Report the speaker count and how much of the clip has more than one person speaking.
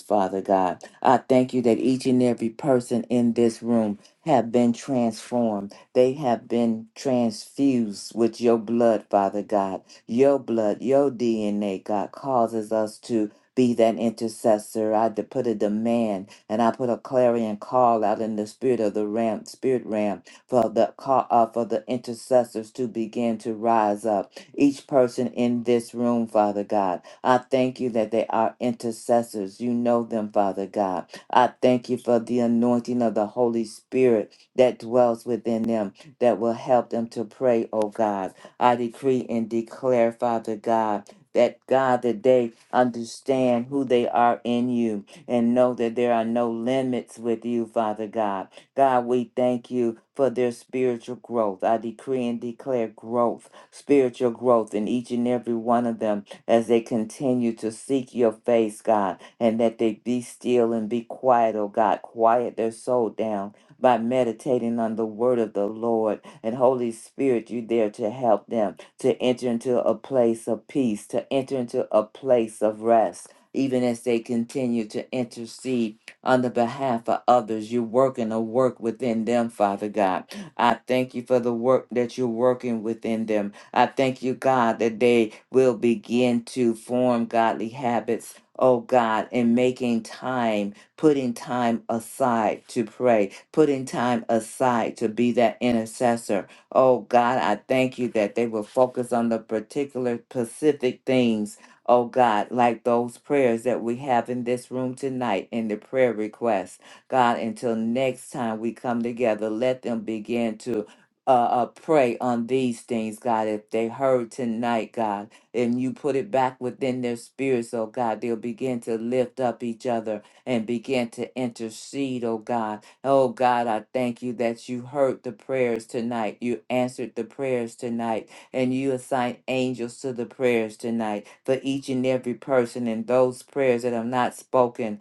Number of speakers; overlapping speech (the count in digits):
1, no overlap